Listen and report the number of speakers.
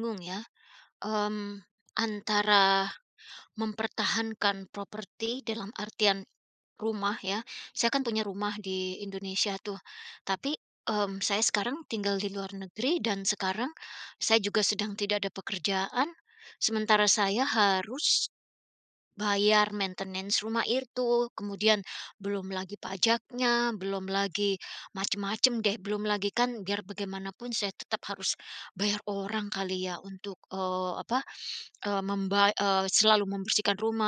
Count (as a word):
one